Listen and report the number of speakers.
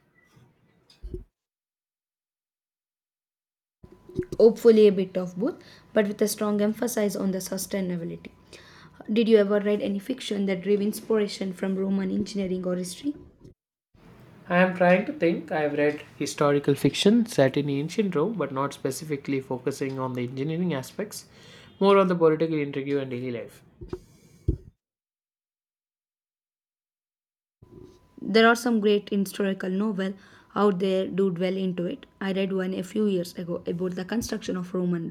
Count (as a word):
two